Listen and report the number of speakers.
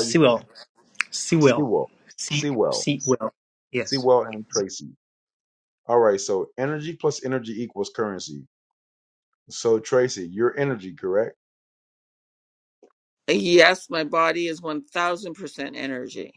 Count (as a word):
three